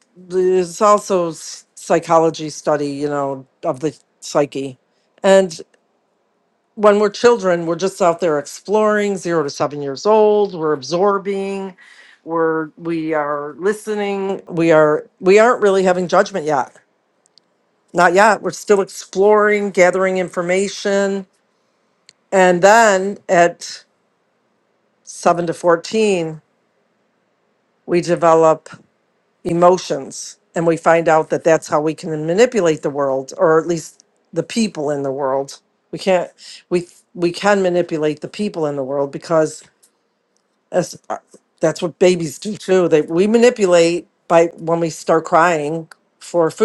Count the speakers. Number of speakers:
1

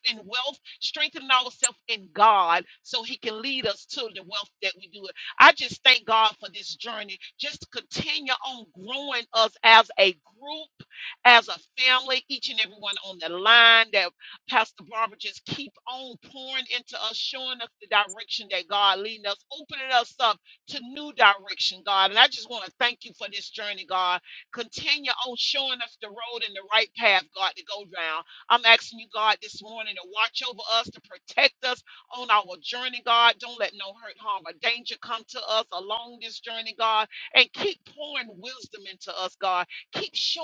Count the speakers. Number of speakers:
1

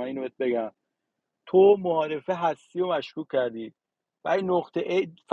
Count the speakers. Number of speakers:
1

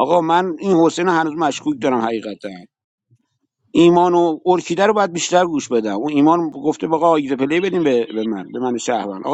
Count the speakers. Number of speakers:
1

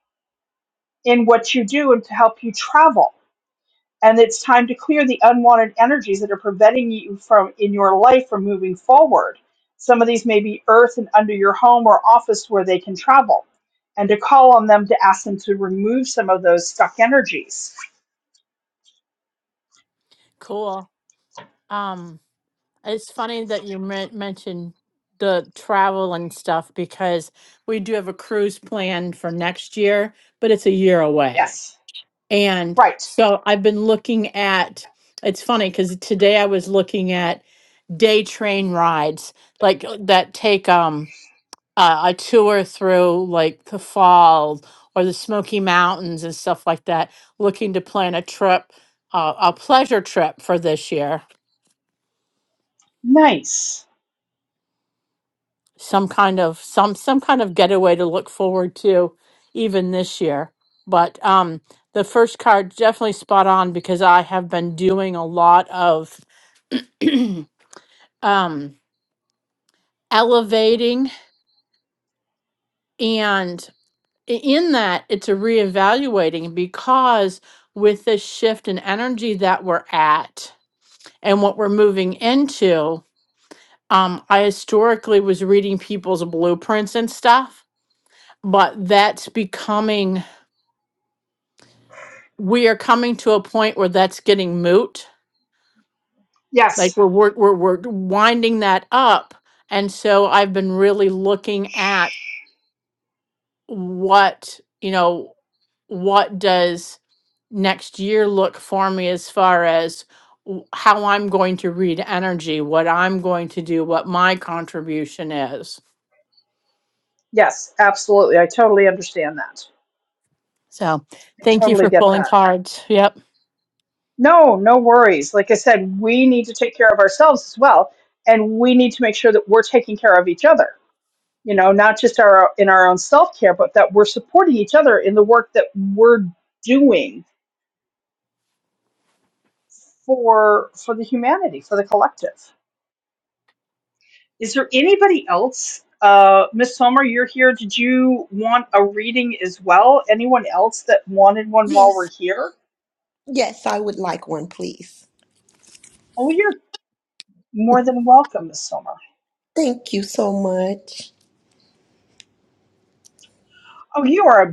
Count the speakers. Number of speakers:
3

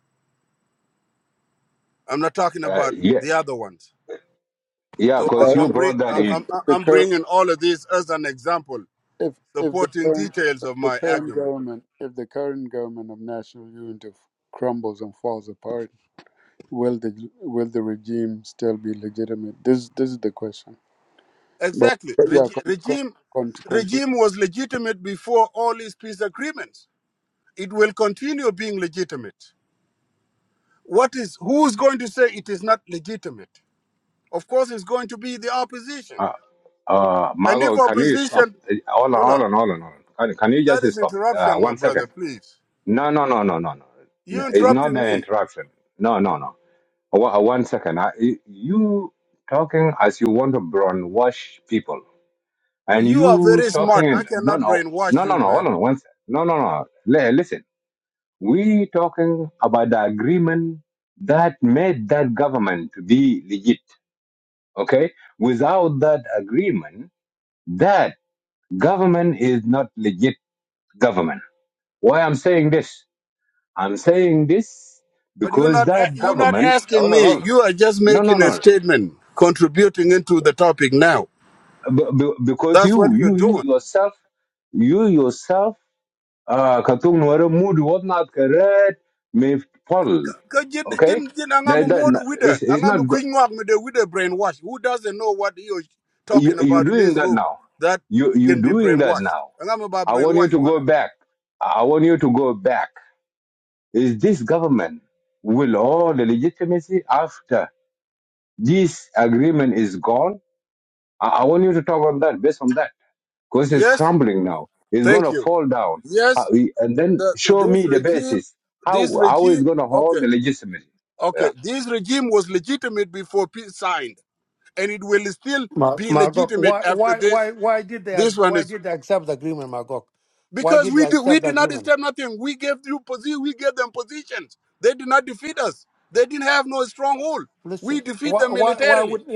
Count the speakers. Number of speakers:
4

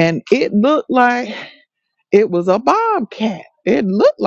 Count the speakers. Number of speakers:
1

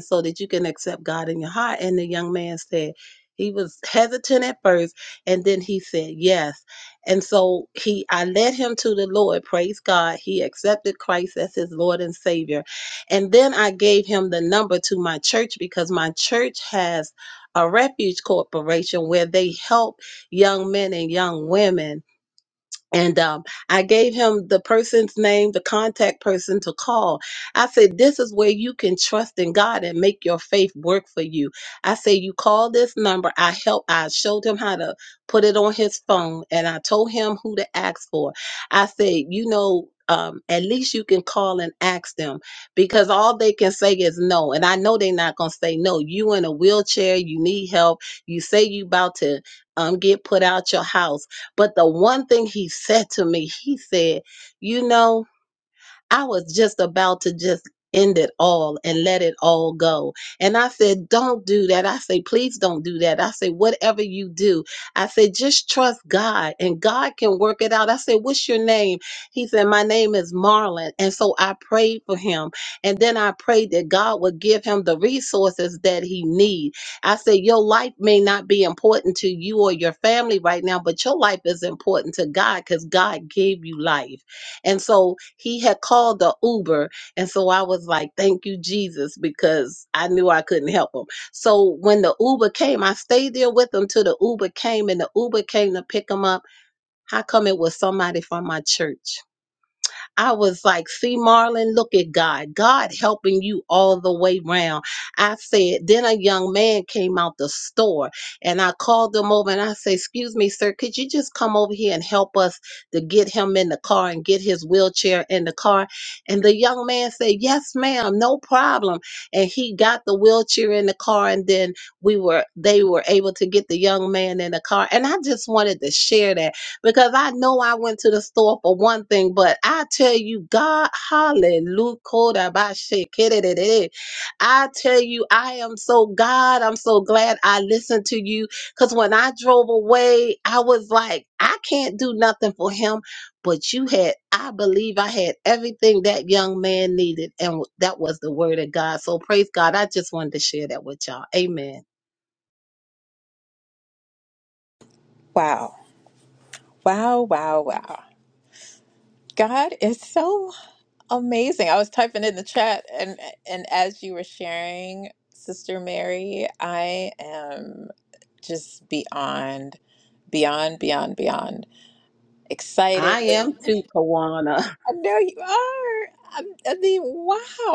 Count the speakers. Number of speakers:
2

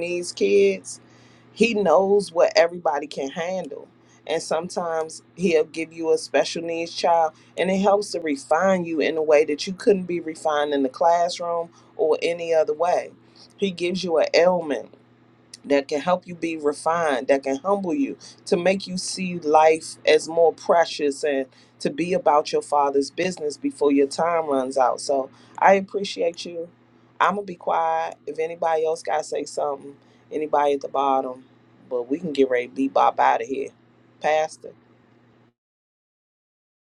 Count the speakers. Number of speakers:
1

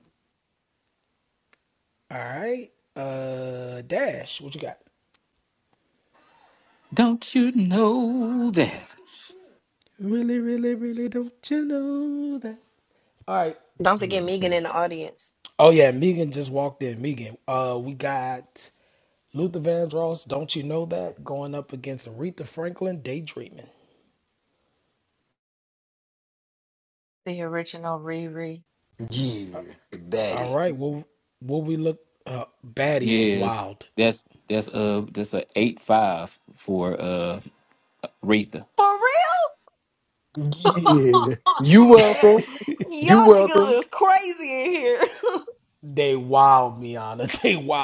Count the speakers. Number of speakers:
6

